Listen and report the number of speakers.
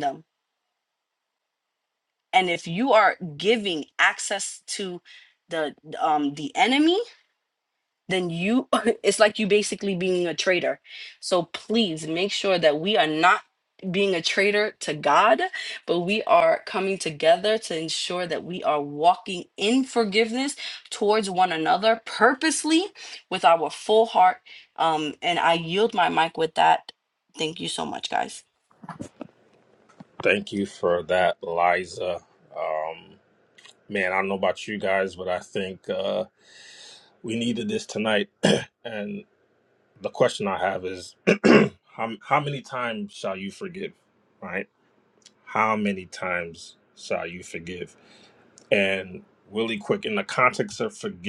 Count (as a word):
two